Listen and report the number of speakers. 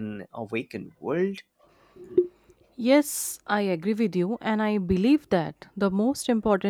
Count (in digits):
2